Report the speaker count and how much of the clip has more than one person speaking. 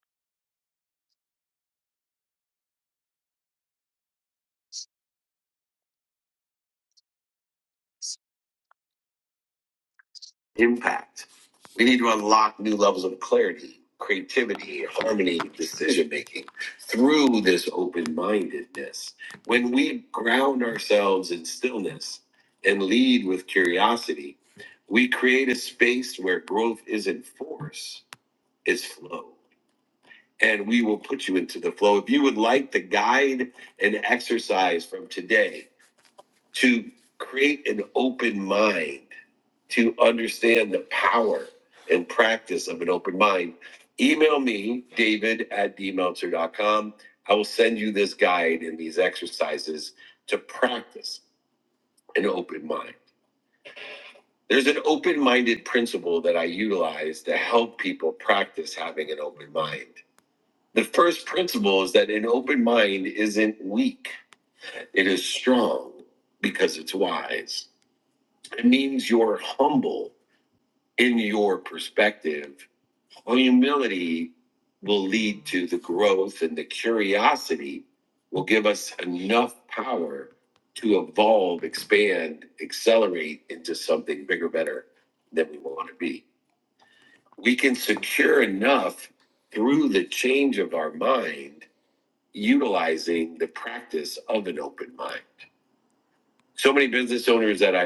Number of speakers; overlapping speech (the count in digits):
1, no overlap